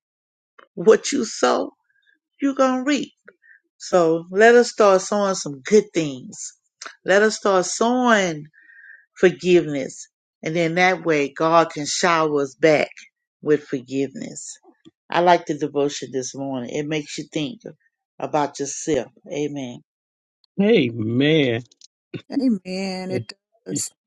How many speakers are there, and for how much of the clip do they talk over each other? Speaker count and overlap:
three, no overlap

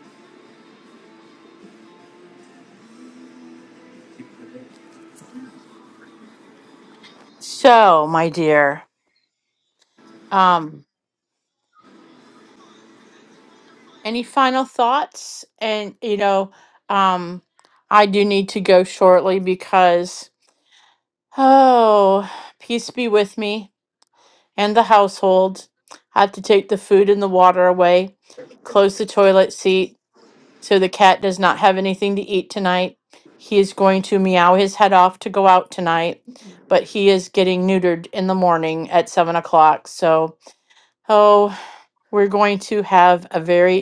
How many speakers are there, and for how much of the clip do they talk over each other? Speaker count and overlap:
one, no overlap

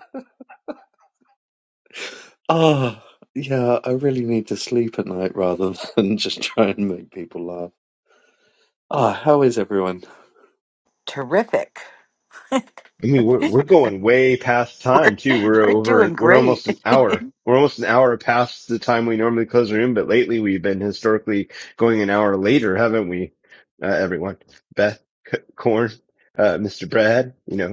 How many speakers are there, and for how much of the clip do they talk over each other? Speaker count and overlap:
three, about 6%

